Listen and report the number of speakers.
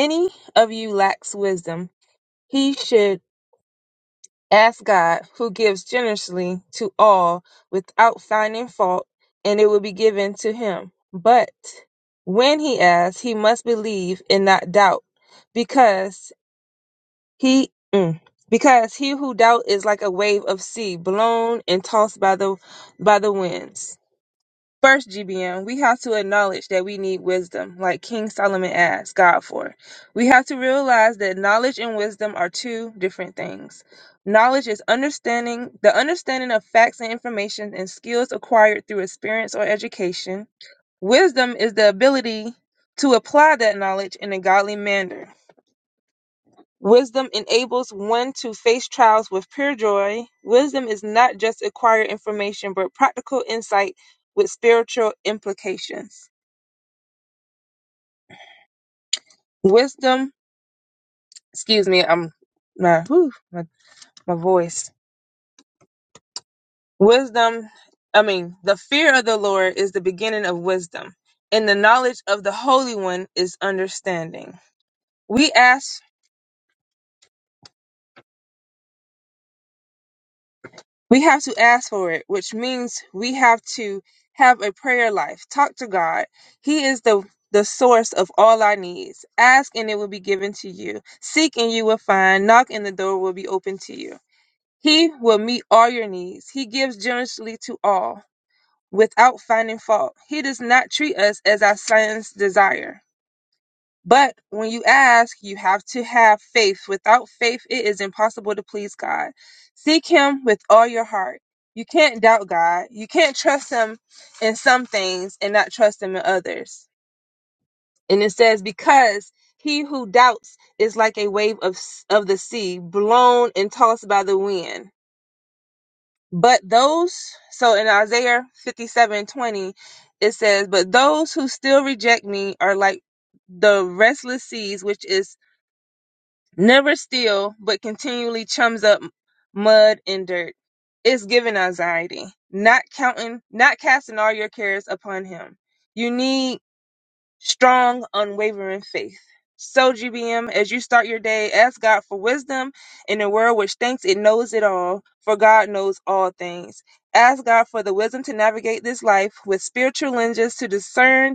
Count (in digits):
1